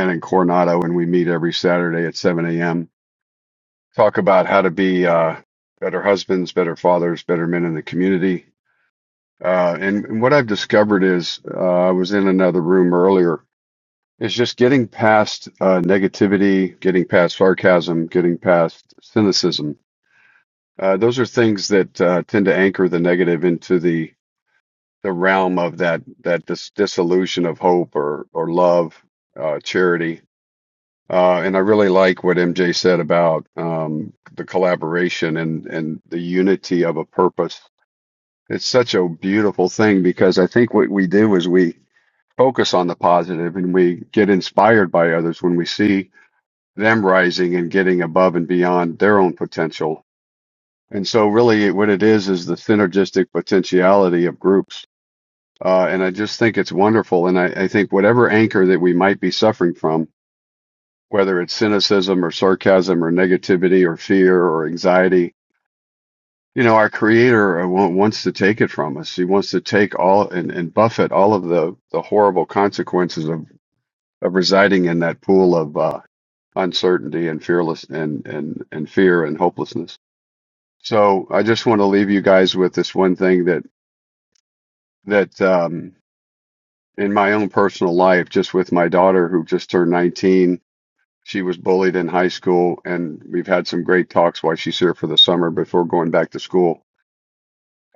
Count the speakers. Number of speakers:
1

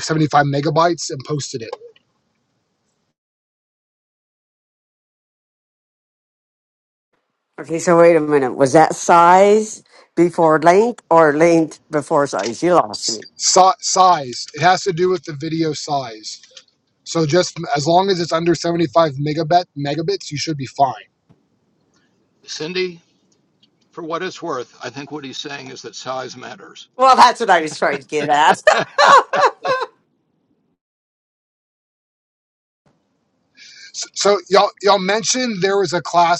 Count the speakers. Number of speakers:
3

